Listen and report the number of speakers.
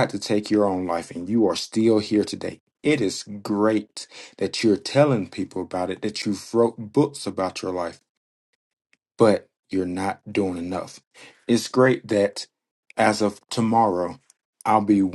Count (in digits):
1